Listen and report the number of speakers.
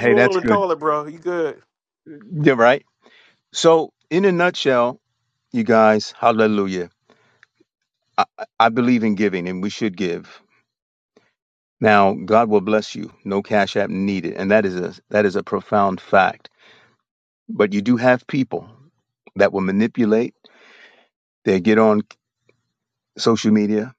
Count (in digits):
2